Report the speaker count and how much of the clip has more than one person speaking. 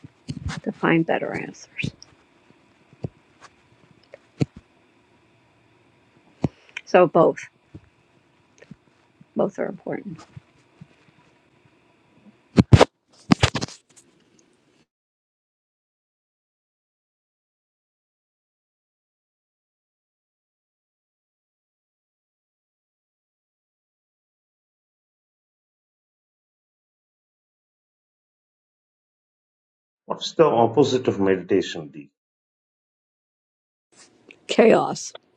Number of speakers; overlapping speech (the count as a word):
two, no overlap